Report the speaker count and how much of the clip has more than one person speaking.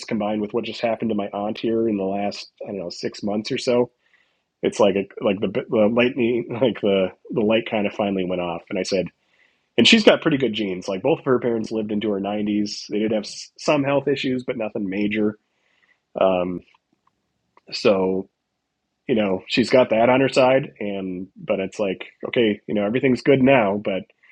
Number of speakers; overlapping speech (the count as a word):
one, no overlap